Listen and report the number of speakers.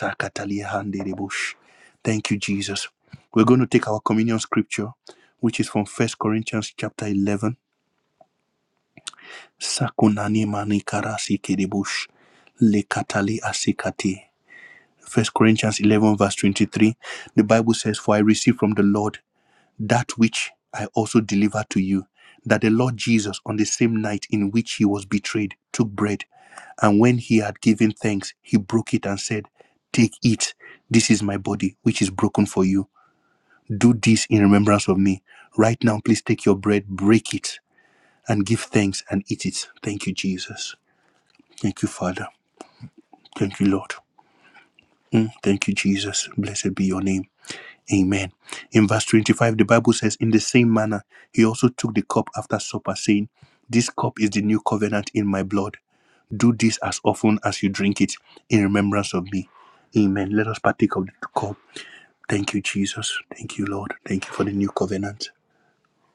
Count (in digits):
1